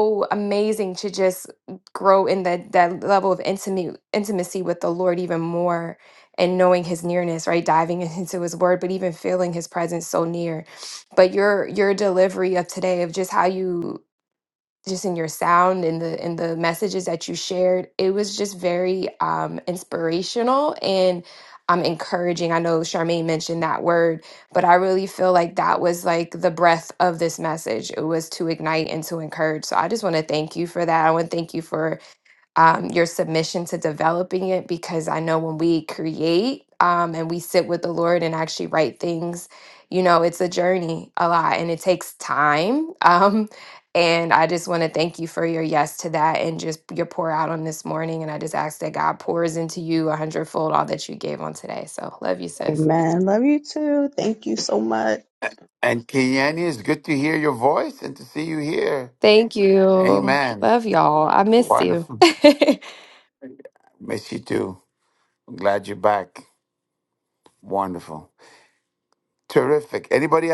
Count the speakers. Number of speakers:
3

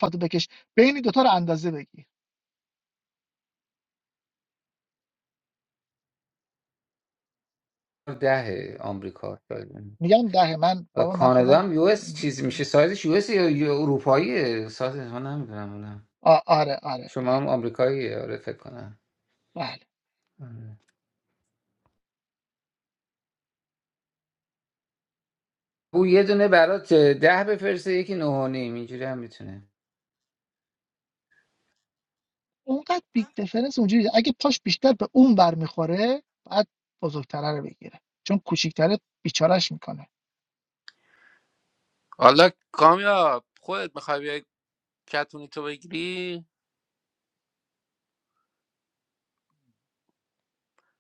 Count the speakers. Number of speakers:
3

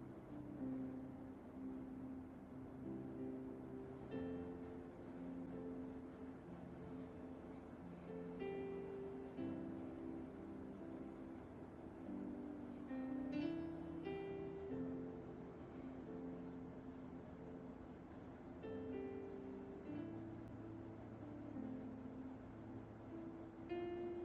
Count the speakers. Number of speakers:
0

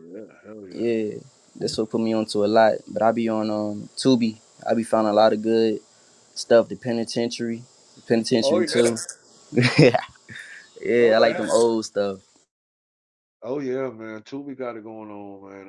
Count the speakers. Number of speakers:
2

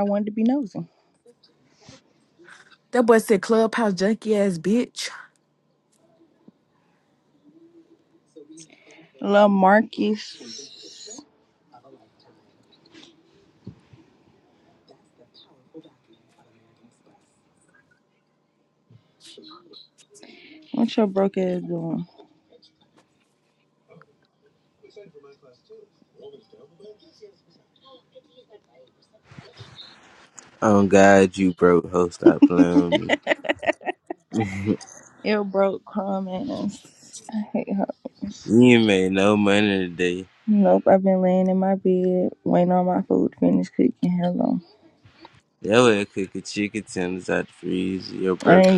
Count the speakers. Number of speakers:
3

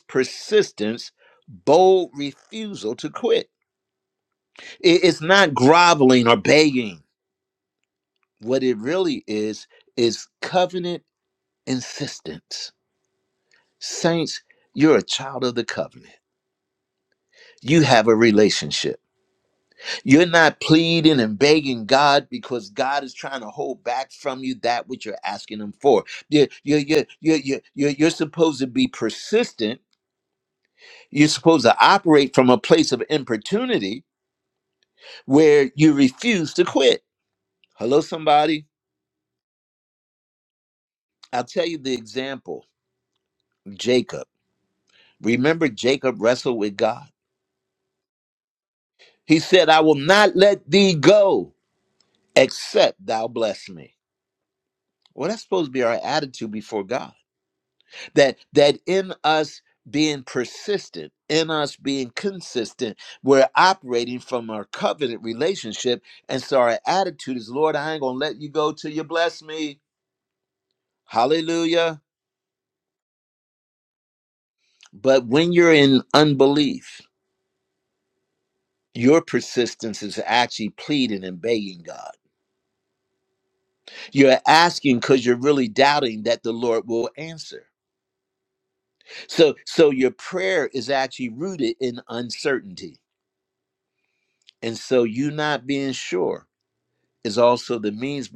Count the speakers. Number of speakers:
1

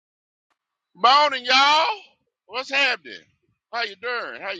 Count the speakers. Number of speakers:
1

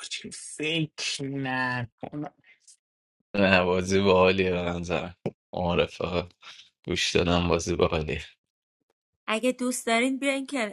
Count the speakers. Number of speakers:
3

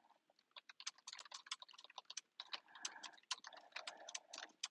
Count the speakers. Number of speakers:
0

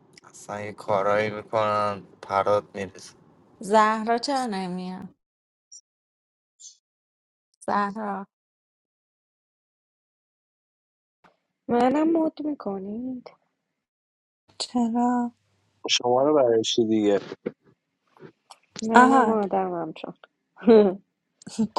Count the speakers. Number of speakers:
5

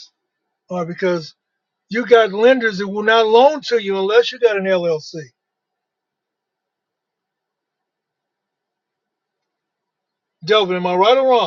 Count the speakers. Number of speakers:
1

